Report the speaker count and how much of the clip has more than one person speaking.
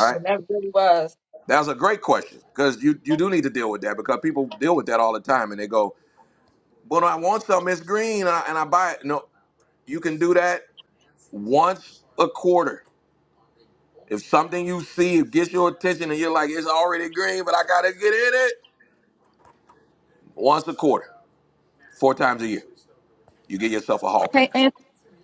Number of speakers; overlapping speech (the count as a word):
two, about 2%